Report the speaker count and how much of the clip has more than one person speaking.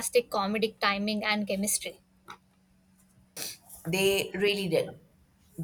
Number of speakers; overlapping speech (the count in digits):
2, no overlap